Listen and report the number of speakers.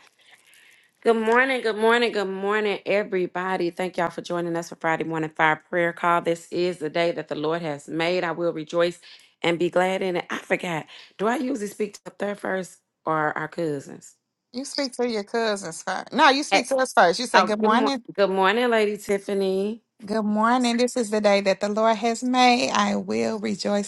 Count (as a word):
two